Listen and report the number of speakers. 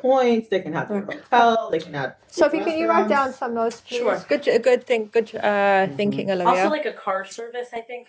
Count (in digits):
3